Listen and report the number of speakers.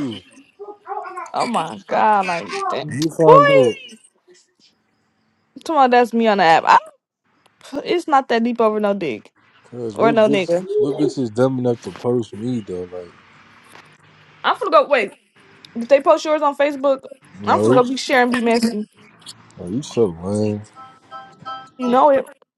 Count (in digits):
2